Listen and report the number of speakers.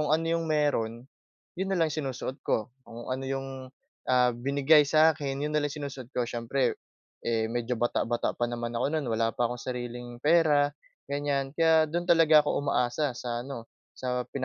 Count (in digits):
1